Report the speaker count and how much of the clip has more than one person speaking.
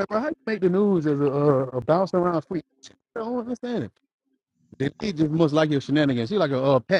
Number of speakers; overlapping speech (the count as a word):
one, no overlap